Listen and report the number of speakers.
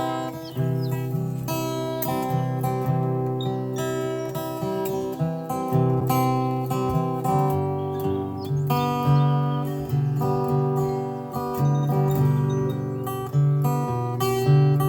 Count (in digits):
0